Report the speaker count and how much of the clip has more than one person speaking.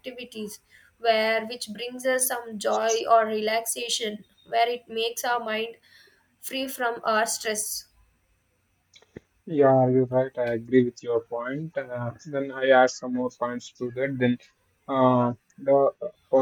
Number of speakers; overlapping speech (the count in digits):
2, no overlap